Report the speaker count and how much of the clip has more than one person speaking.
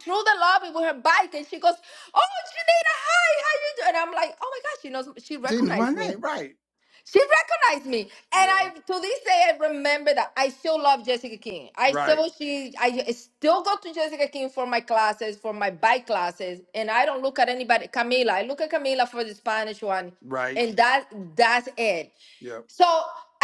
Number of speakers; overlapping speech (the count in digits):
2, about 6%